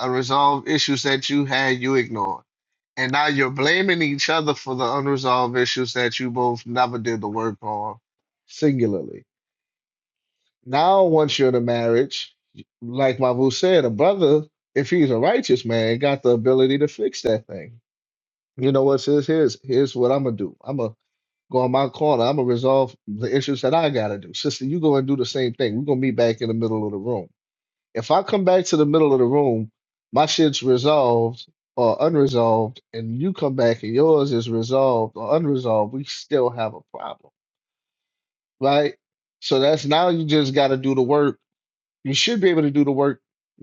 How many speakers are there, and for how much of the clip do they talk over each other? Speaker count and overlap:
1, no overlap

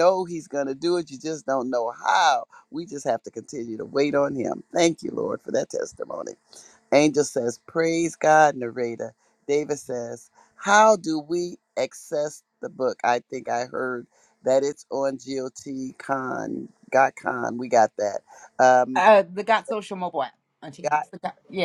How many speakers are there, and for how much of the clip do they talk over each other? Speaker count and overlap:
2, about 1%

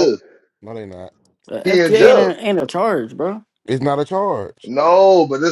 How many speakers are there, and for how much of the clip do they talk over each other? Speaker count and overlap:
3, about 14%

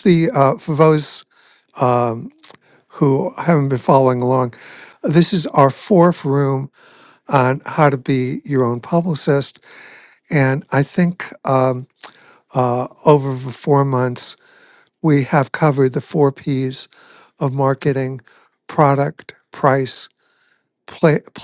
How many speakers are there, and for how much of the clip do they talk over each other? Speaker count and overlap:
1, no overlap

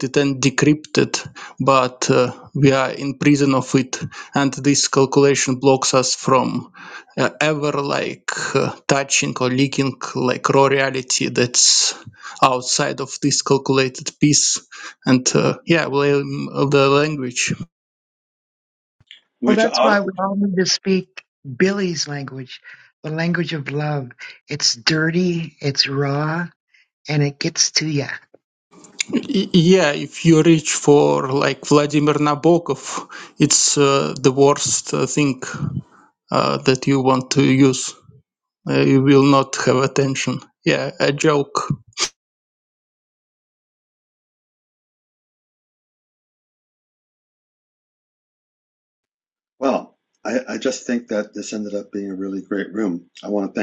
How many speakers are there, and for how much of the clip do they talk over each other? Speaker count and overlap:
3, about 1%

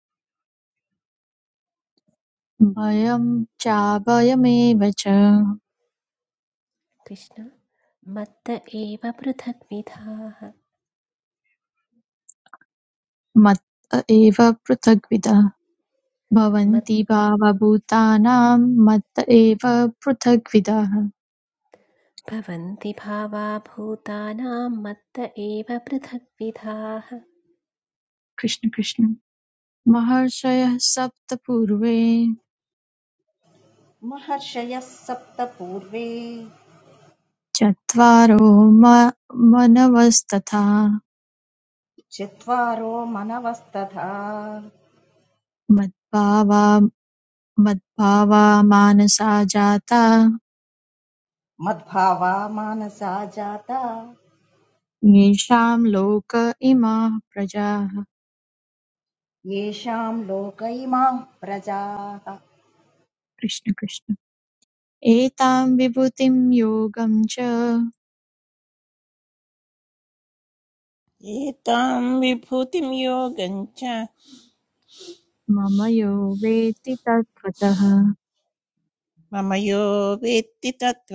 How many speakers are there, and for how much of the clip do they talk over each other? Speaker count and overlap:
4, no overlap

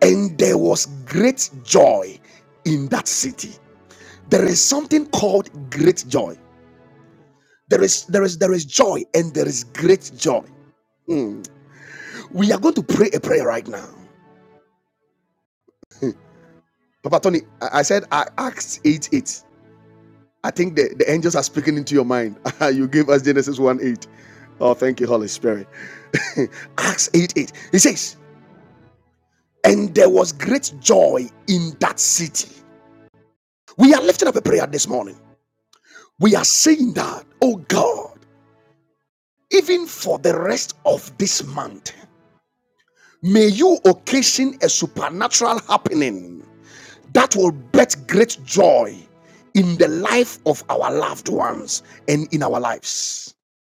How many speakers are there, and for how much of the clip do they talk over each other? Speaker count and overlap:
1, no overlap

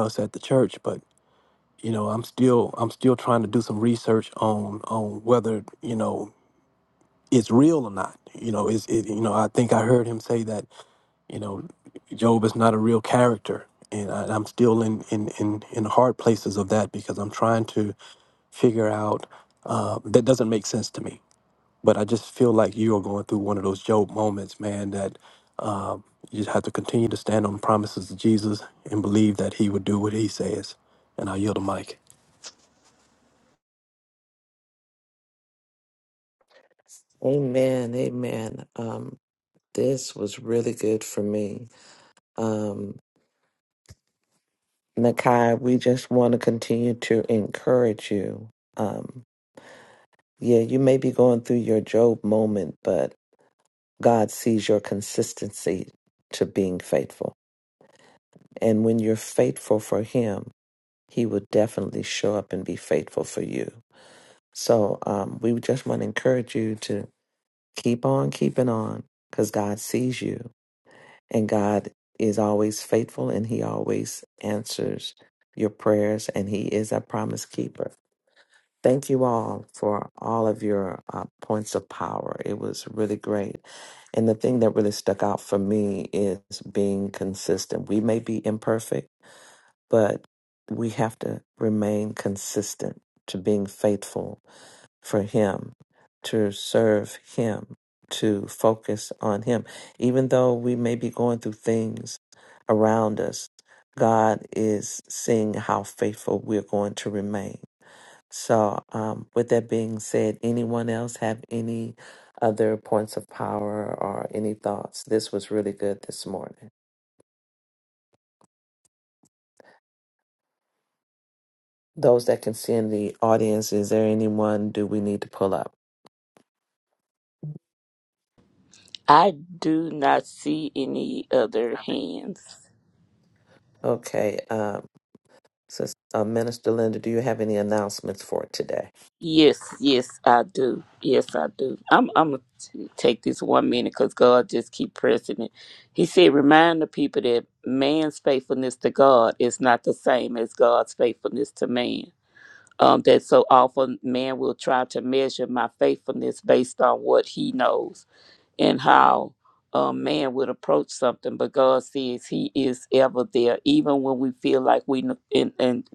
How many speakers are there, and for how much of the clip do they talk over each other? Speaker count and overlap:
3, no overlap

